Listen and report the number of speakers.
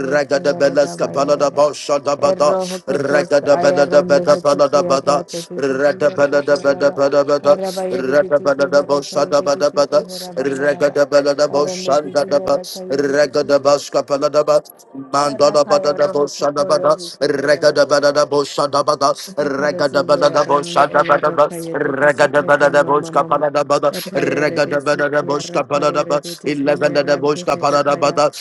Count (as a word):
two